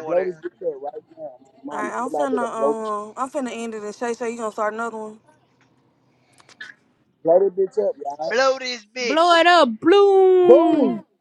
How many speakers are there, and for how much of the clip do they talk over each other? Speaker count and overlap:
four, about 19%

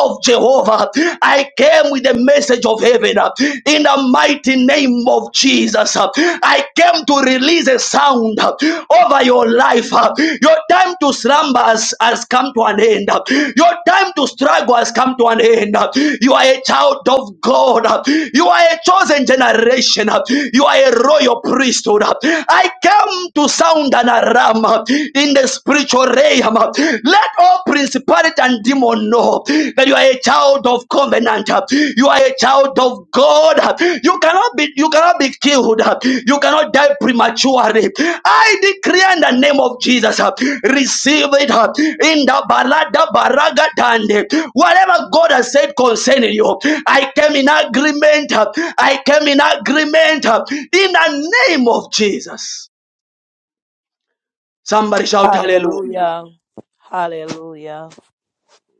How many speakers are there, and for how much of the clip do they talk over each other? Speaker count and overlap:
two, about 1%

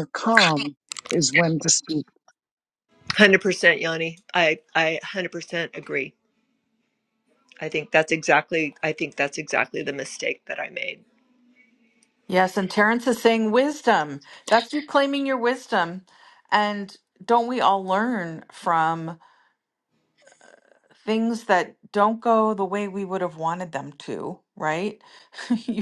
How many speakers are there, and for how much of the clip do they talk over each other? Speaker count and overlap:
three, no overlap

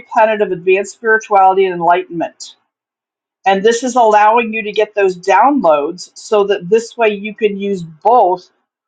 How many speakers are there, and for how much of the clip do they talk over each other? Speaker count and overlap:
one, no overlap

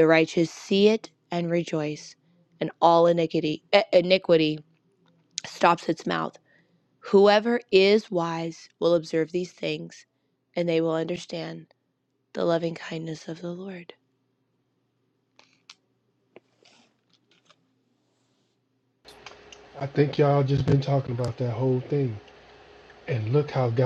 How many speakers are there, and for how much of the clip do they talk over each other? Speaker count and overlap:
two, no overlap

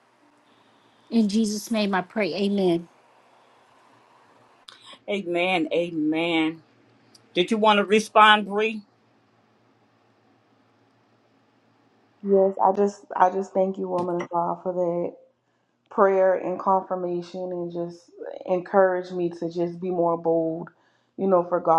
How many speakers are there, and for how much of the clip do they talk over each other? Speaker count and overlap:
three, no overlap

